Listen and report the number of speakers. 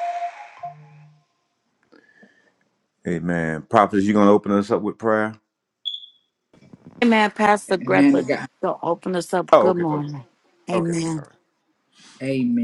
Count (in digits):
3